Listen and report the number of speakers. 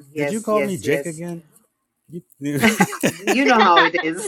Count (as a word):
two